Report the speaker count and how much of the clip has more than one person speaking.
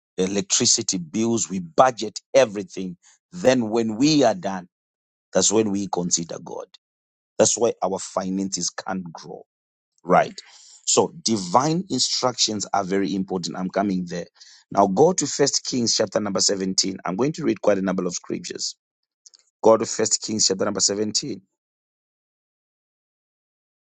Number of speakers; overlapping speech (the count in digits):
1, no overlap